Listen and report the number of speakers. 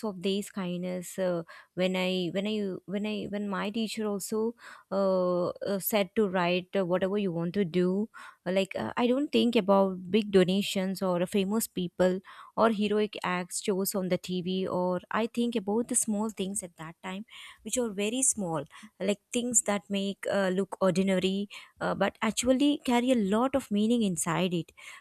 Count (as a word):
one